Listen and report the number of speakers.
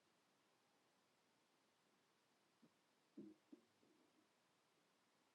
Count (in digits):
0